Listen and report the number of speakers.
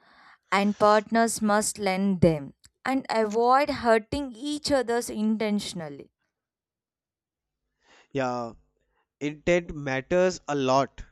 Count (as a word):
two